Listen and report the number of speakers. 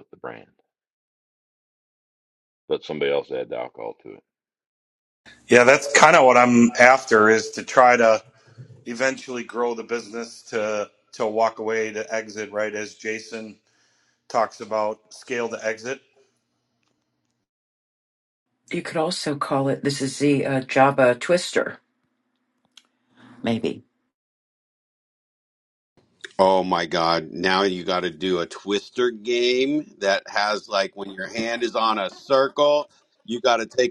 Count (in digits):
4